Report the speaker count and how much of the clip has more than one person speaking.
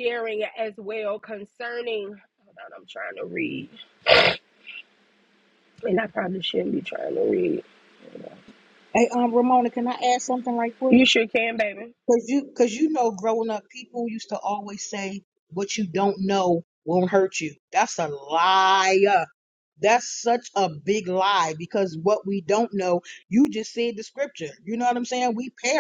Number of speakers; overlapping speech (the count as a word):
two, under 1%